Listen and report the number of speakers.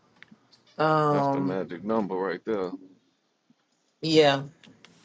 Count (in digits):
2